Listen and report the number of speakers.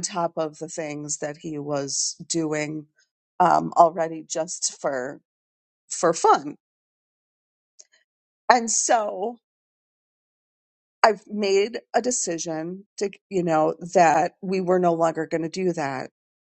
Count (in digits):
1